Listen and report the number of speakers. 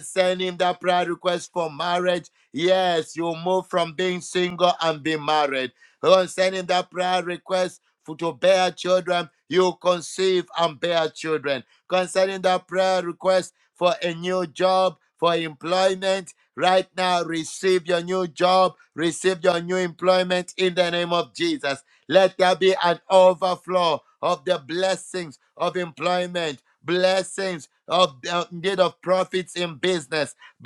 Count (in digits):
1